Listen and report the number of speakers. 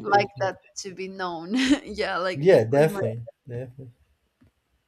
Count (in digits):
2